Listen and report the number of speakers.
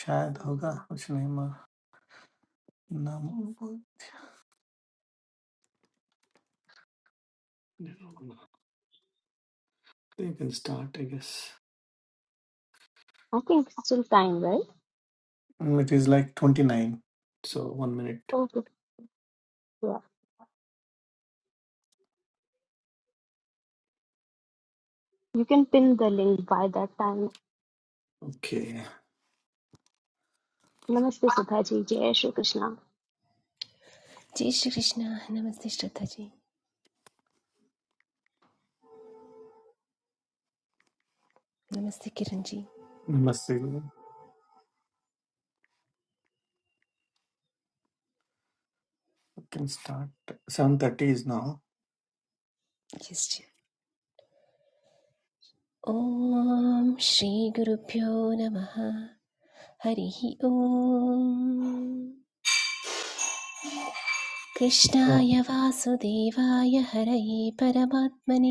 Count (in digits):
3